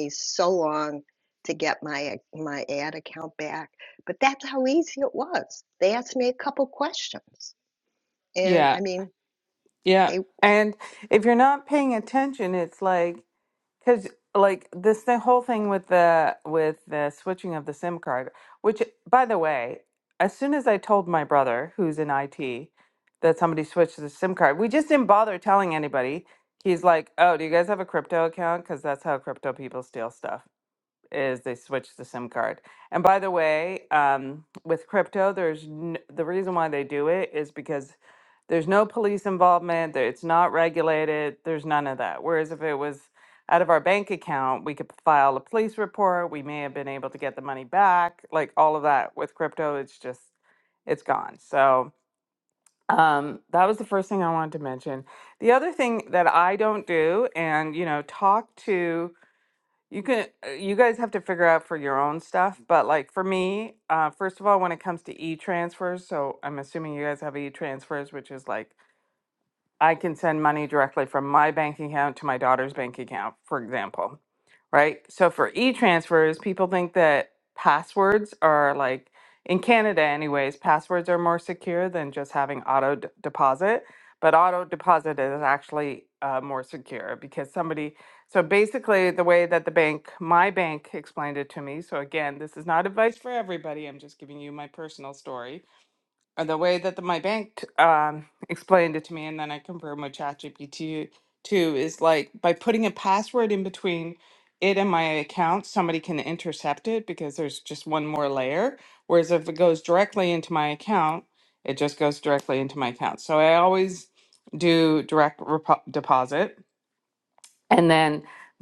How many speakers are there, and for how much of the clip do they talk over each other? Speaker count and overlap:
two, under 1%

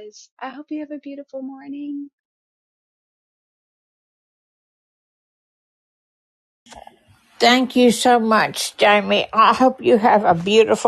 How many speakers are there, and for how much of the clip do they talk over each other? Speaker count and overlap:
two, no overlap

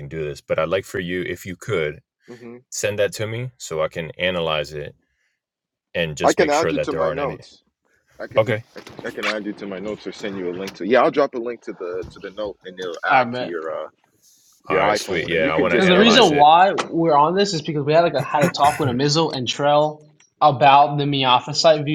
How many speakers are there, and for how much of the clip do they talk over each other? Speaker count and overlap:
three, about 16%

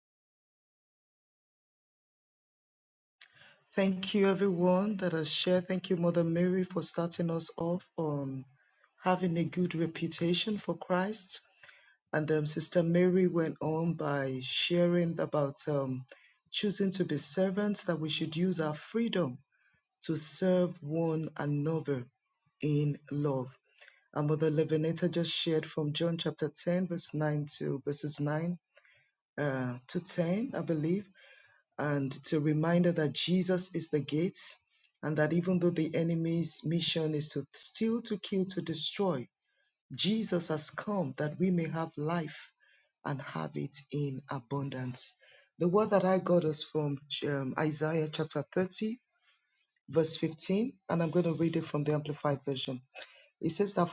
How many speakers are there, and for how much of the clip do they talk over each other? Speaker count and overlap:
one, no overlap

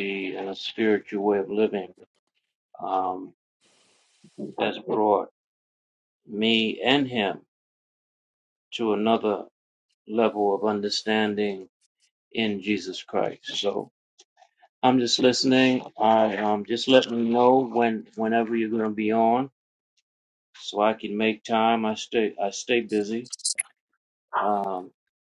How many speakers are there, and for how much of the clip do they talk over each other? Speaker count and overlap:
one, no overlap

